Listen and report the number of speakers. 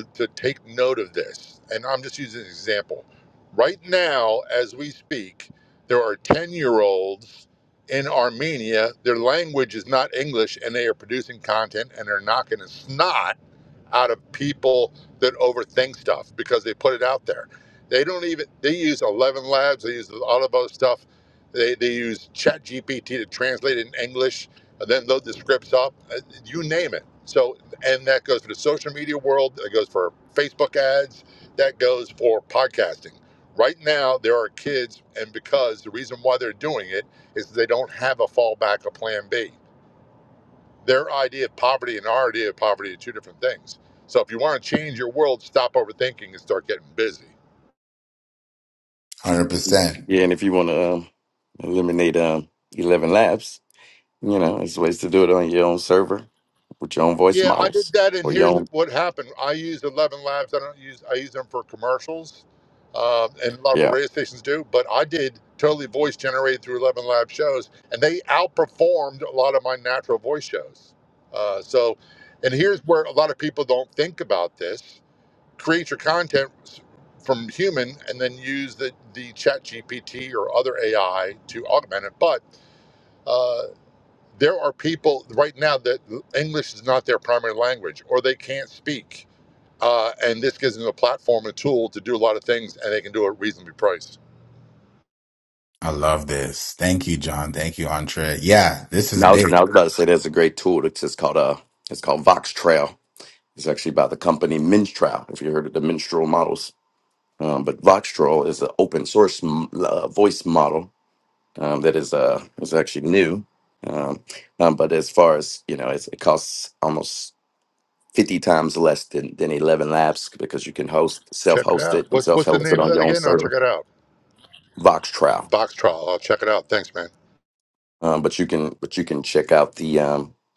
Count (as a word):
three